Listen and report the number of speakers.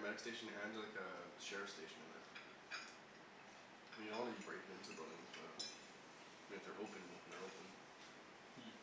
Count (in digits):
1